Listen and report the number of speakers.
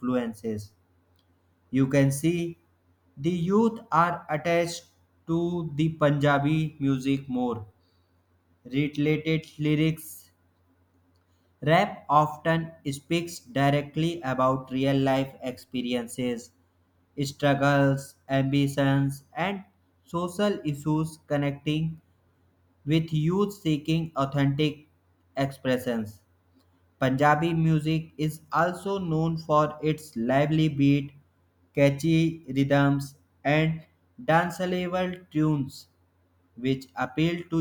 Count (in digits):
1